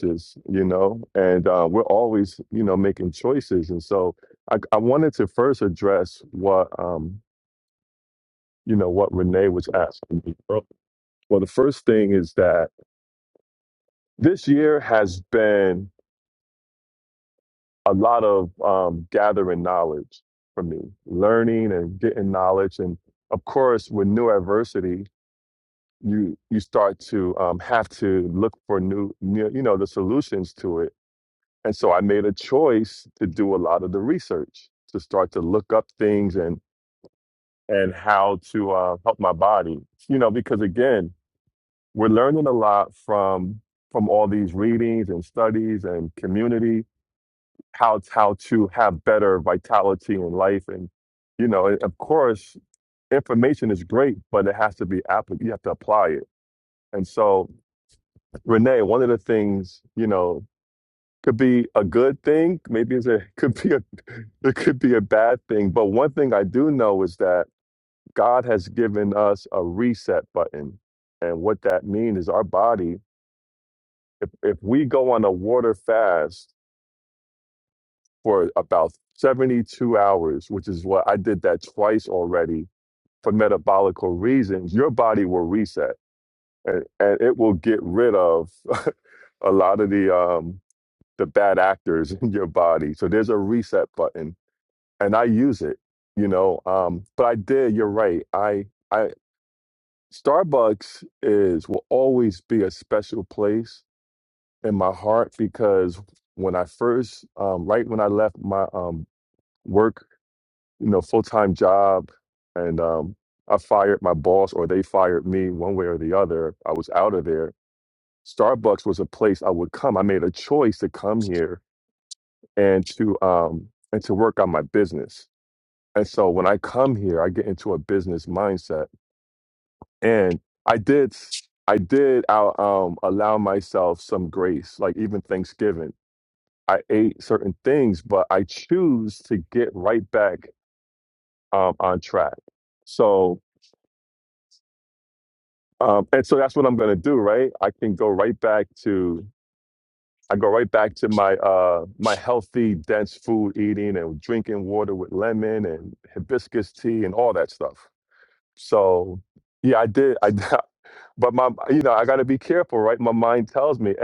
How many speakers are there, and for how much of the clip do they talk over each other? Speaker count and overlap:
1, no overlap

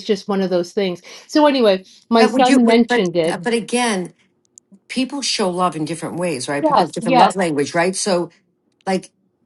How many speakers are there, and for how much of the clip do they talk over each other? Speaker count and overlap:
2, about 20%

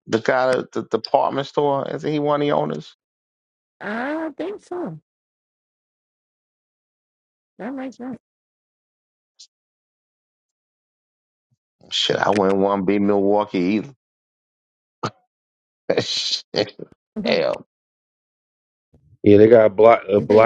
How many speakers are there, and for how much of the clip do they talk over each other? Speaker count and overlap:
3, about 1%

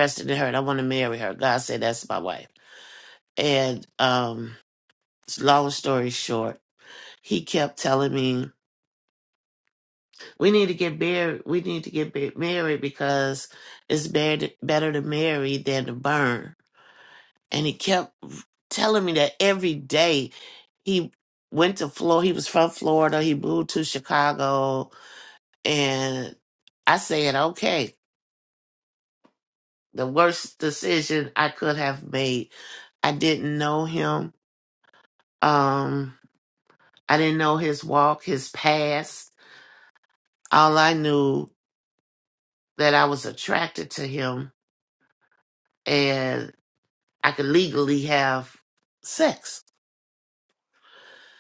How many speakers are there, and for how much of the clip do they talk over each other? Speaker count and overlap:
1, no overlap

